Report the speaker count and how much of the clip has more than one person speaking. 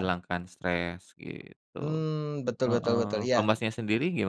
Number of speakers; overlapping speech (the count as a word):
two, about 25%